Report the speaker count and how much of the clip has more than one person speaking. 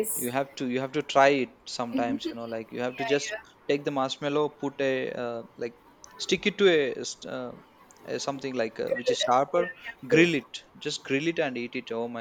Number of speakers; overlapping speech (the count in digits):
2, about 11%